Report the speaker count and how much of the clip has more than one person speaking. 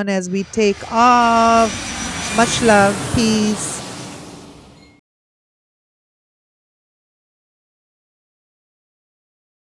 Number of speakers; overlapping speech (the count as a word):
one, no overlap